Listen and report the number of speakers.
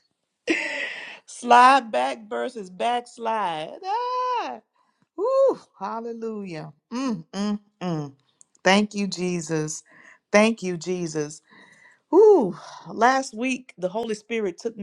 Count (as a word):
one